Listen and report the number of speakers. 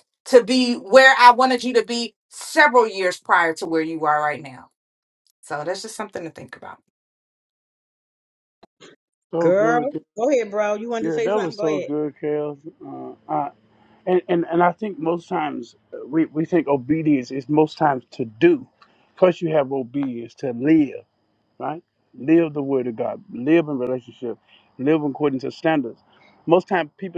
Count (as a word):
three